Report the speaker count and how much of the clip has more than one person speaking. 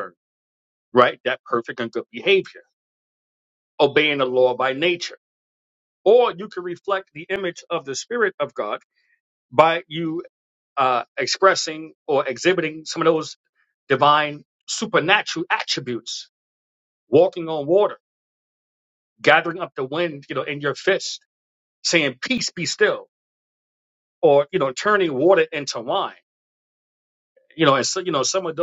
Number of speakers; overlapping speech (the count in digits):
1, no overlap